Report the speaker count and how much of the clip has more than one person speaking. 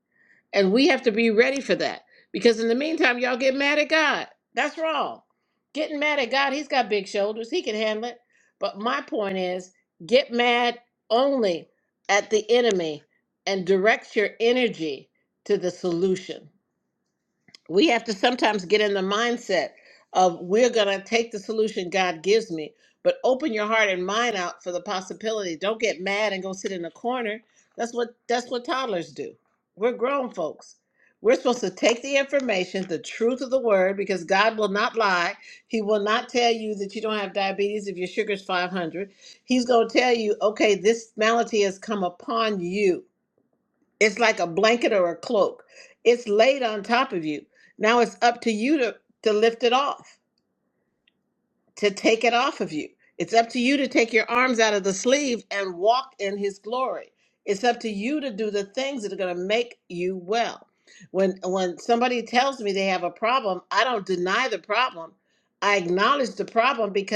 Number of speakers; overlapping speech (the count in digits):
1, no overlap